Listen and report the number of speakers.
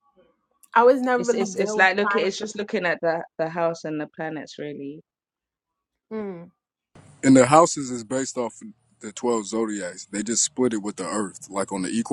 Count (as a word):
three